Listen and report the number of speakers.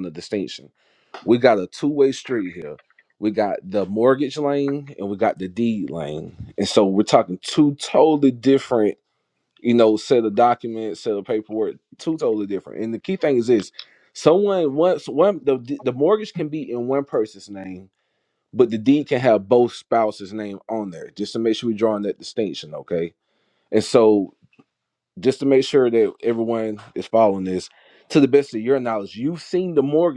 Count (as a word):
one